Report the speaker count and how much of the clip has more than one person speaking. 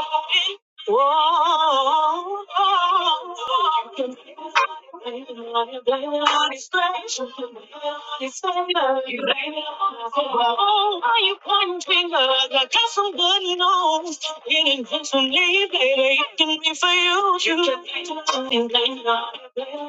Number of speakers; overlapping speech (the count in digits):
1, no overlap